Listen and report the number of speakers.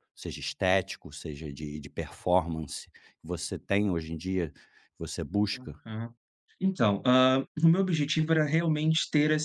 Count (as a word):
two